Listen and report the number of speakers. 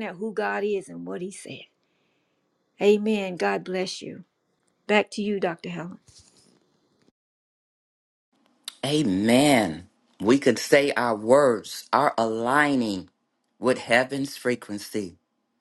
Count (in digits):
2